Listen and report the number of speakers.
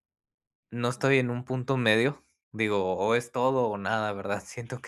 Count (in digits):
1